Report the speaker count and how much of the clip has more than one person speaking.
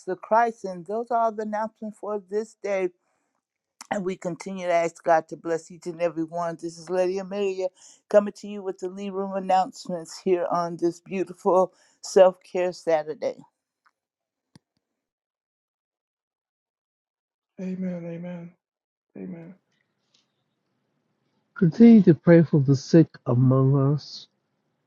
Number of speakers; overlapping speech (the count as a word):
three, no overlap